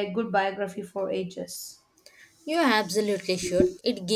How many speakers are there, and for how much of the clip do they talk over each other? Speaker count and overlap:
2, no overlap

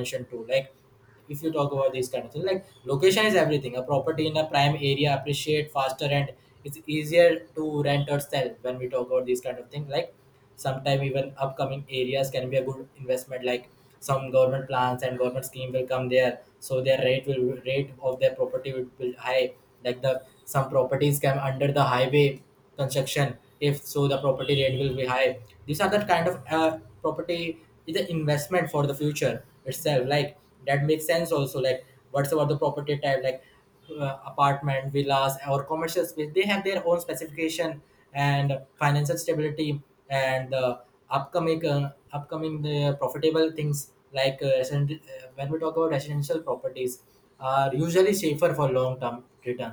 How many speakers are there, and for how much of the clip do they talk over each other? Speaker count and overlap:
1, no overlap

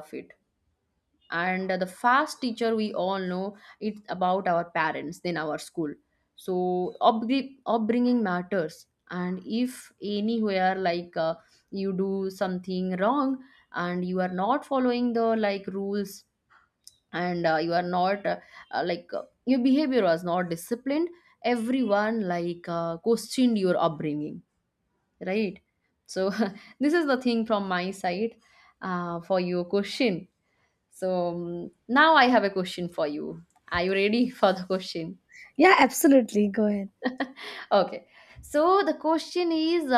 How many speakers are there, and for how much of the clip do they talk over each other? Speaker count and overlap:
2, no overlap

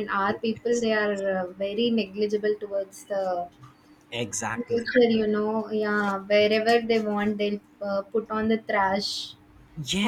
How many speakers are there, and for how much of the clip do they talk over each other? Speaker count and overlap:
2, about 6%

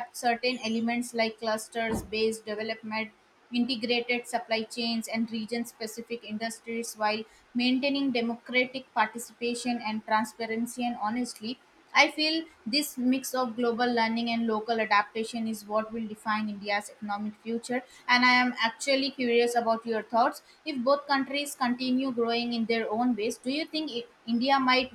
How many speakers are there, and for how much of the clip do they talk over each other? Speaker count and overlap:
1, no overlap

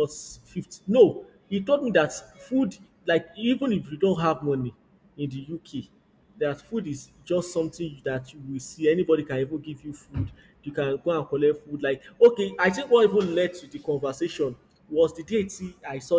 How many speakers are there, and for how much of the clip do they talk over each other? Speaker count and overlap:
1, no overlap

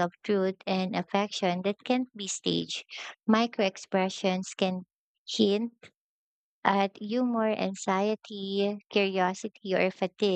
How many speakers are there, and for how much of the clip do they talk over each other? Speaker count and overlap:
1, no overlap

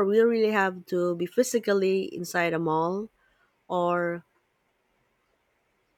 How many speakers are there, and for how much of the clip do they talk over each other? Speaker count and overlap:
1, no overlap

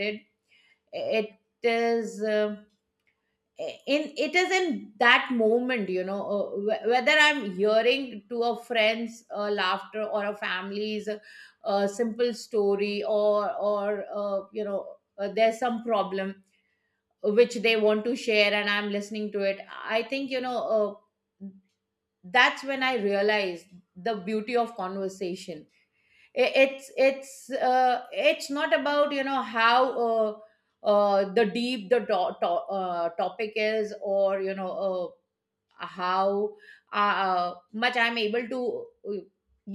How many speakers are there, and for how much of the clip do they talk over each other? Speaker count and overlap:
1, no overlap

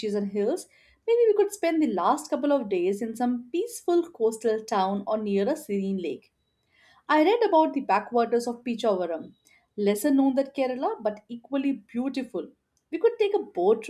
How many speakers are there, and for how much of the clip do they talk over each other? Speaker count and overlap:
1, no overlap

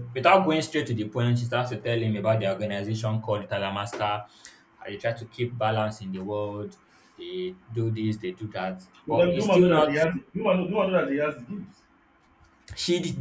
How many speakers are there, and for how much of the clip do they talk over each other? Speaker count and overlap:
2, about 7%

